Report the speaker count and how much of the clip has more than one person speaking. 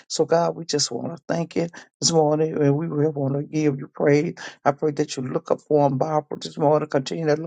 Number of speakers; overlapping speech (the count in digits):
1, no overlap